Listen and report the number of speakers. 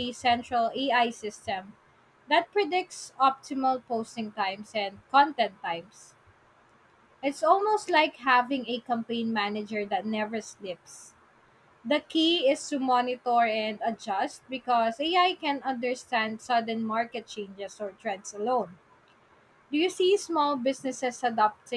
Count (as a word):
one